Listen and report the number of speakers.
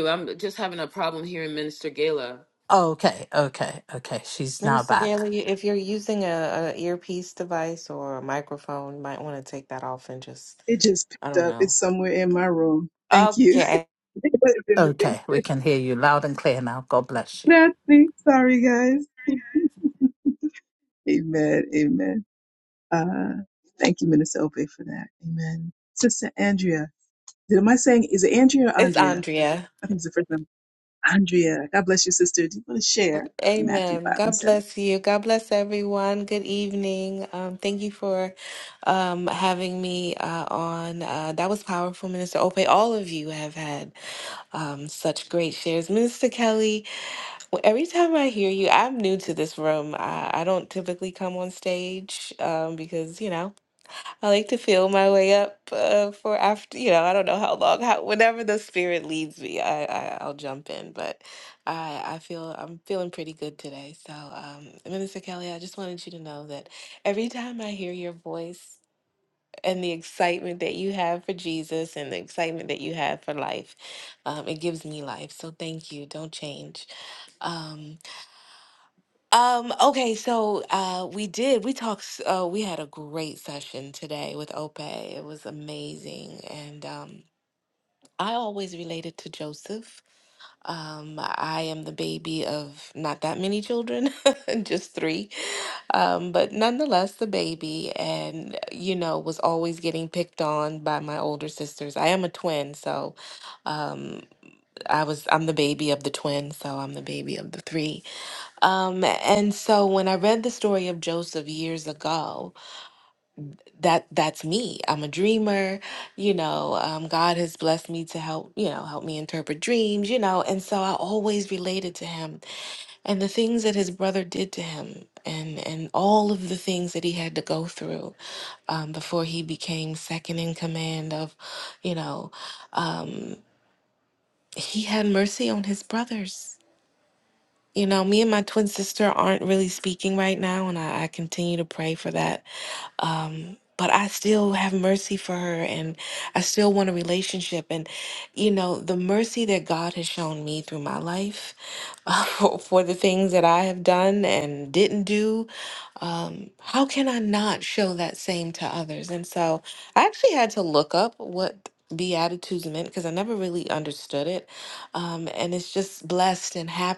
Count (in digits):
4